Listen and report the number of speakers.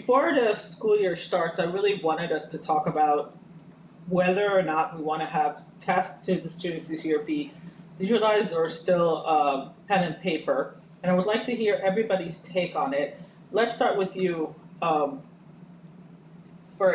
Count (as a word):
one